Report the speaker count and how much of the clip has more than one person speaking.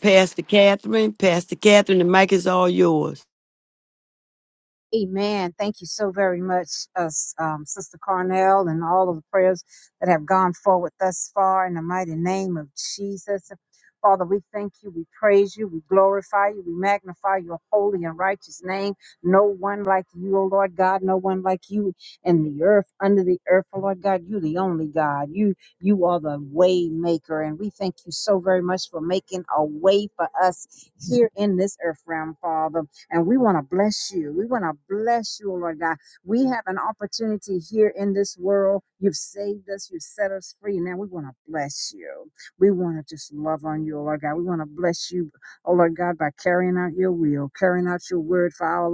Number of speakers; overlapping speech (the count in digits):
2, no overlap